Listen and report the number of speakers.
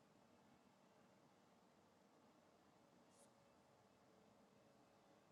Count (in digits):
0